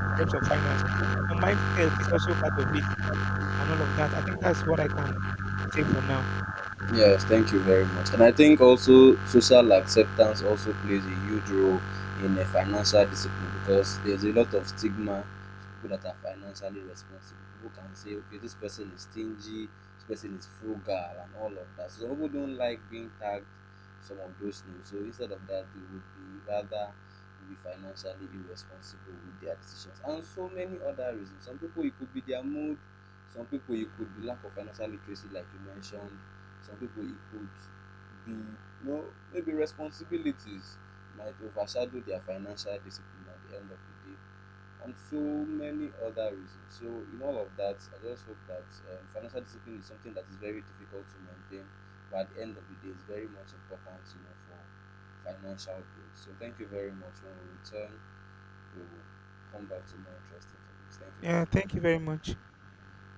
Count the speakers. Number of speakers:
2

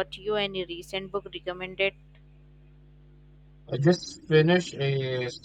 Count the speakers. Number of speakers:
2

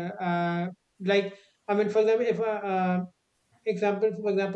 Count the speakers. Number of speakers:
1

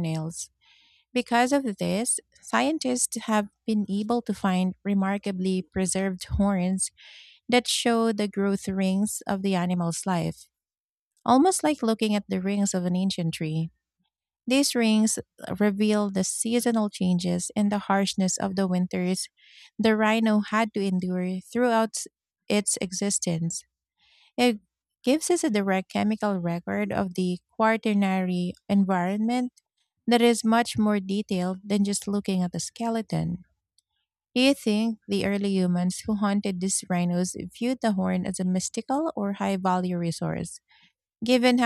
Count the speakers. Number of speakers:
1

